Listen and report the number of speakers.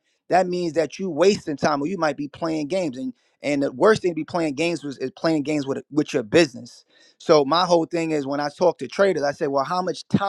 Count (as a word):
one